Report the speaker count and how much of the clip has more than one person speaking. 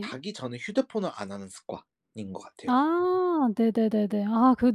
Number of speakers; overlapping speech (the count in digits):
2, about 3%